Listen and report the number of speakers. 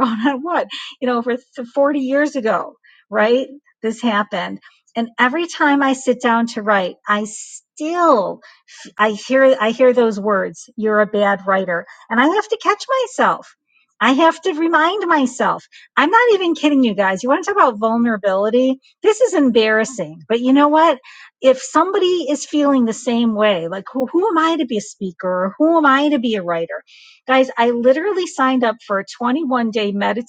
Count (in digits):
1